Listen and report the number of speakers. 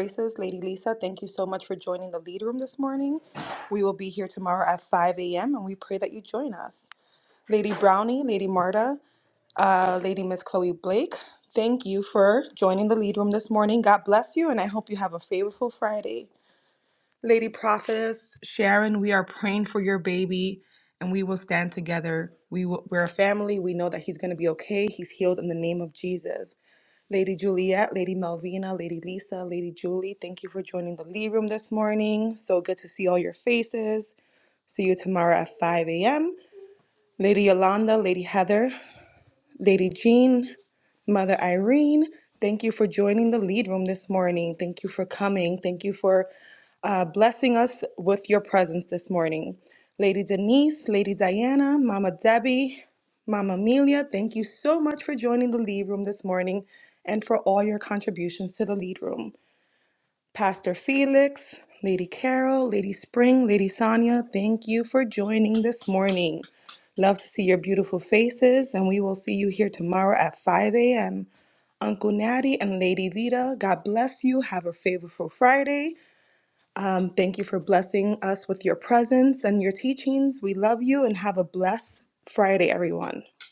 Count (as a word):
one